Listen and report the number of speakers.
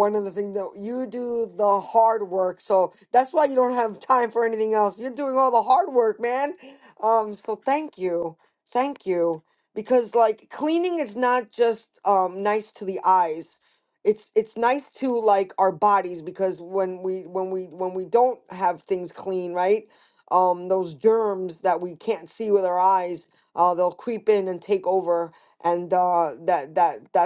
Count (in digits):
1